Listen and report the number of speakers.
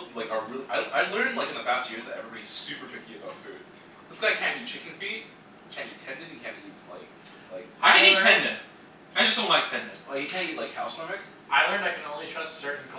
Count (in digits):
3